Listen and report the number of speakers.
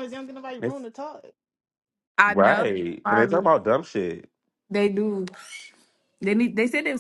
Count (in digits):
3